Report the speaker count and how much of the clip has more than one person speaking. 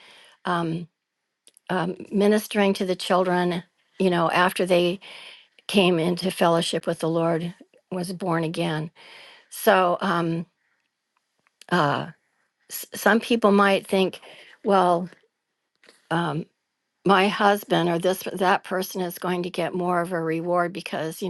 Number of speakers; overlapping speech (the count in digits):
1, no overlap